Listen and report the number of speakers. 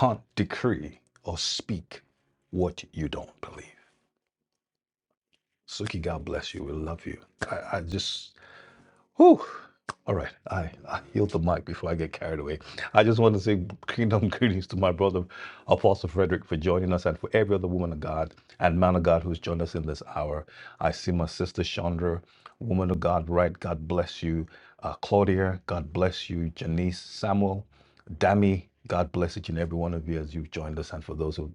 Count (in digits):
1